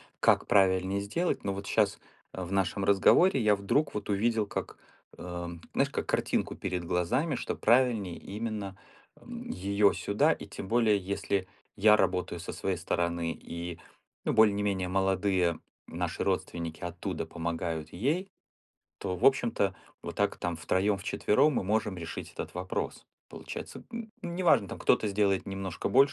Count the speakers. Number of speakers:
one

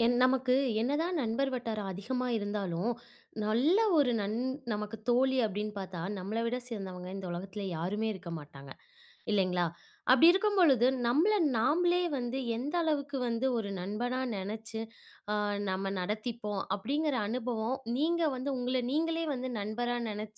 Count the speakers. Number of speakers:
one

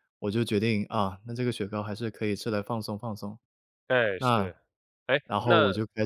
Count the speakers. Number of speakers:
two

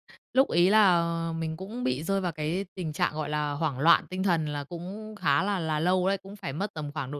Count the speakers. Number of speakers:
one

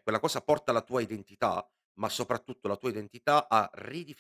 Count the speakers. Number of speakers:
one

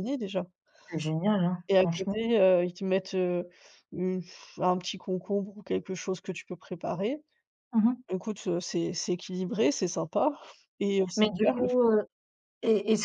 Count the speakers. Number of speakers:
two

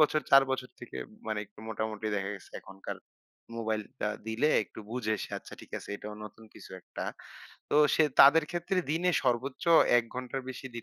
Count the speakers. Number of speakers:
one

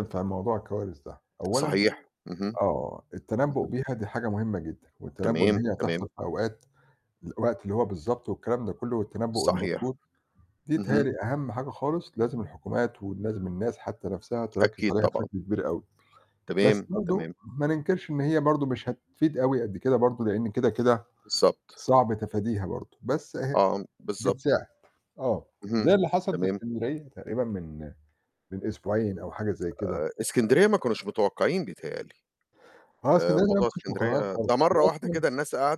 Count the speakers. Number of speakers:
two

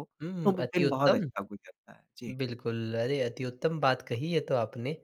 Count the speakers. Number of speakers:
two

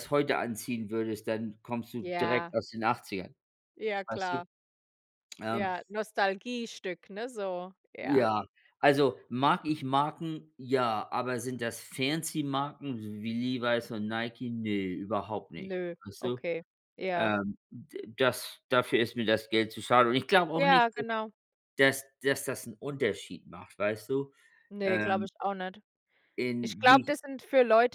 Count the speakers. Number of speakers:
two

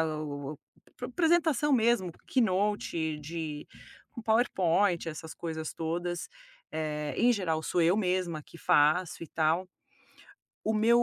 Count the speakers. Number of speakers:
one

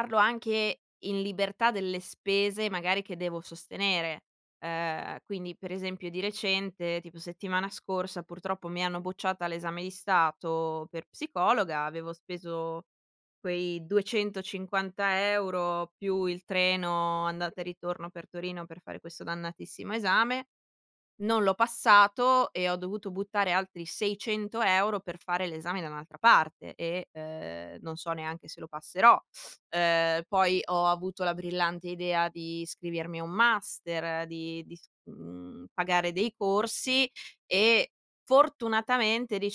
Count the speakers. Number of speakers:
one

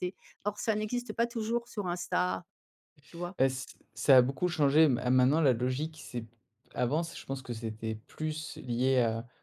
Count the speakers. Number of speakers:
two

